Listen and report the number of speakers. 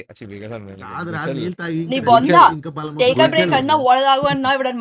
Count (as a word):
three